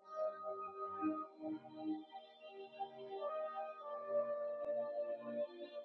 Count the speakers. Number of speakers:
zero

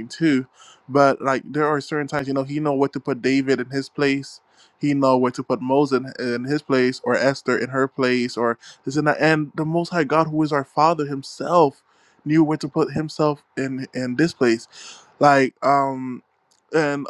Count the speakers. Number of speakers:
one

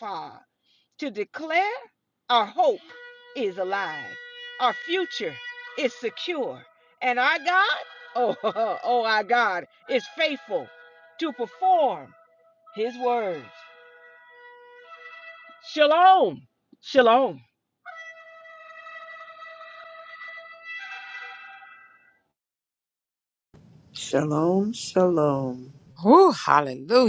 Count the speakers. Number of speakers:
three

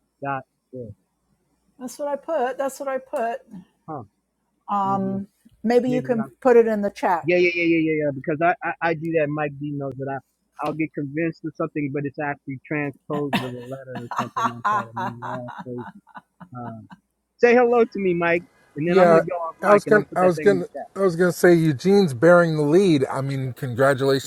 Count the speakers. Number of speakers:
three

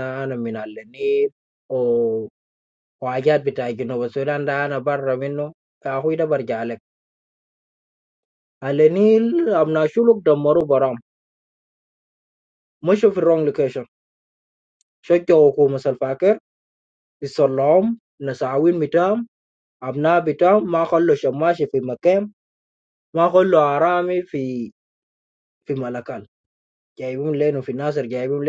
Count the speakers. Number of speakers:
one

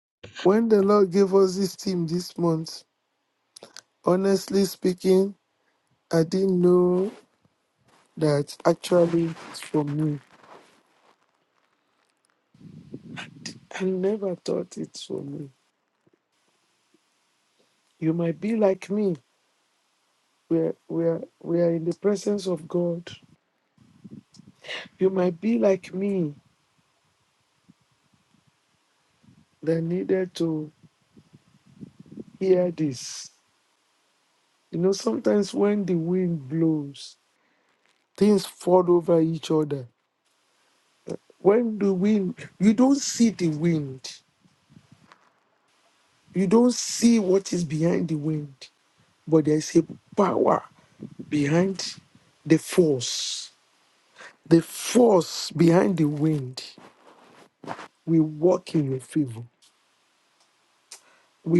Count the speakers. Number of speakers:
one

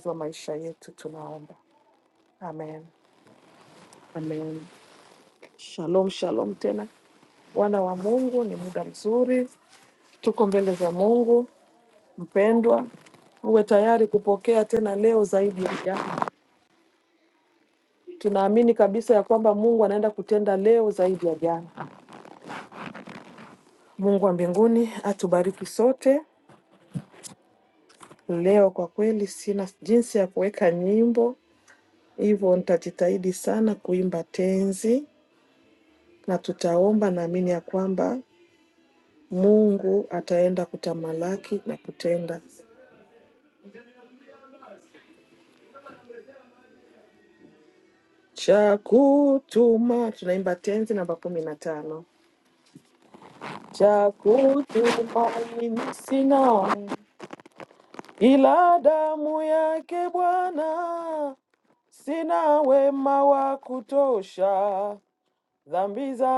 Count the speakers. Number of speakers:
one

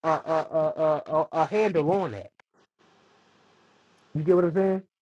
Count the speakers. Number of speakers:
one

